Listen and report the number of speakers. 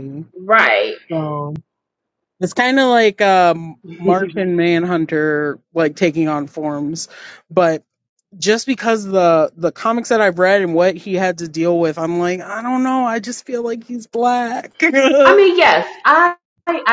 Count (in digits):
2